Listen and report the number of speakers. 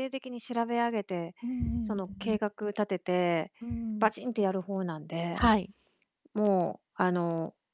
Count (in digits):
2